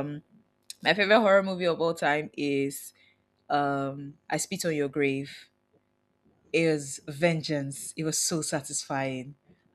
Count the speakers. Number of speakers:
1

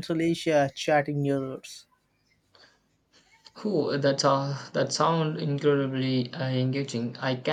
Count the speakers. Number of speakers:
2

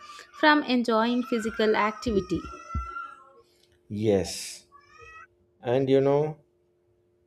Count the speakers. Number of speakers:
2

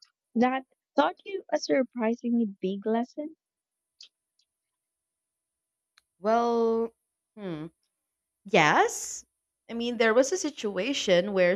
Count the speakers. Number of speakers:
2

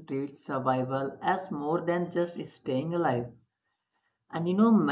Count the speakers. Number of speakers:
1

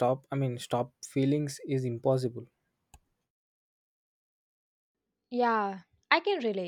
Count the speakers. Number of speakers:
2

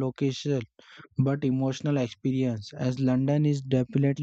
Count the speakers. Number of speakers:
1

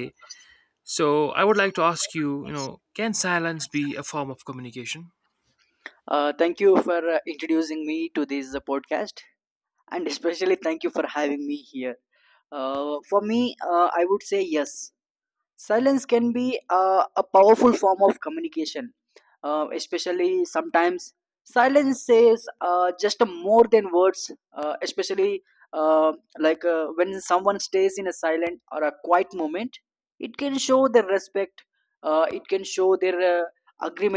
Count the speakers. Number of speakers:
2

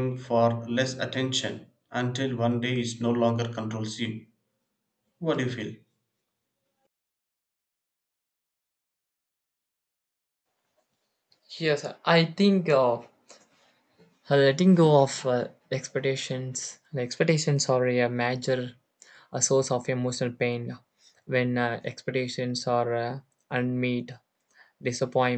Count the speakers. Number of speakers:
2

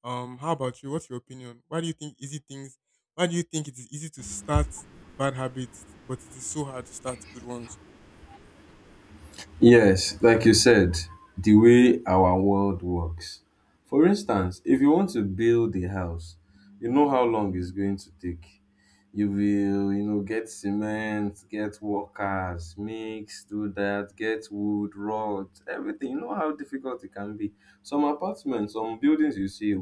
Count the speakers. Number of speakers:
2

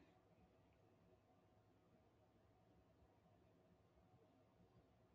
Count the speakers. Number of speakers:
0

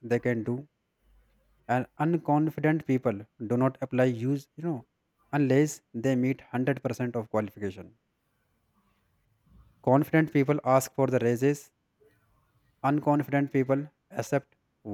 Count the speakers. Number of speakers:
1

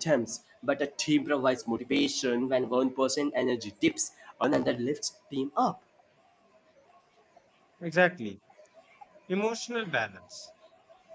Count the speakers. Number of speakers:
2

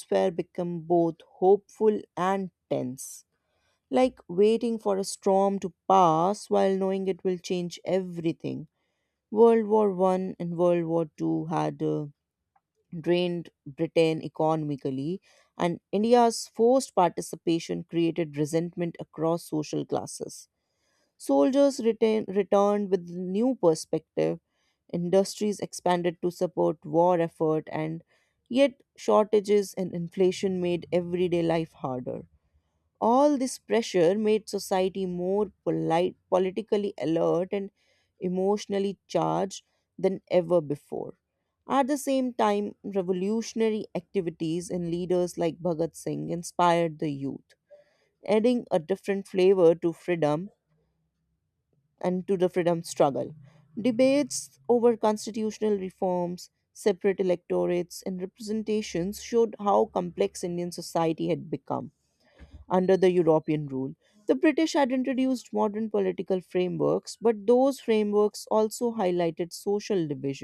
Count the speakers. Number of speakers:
1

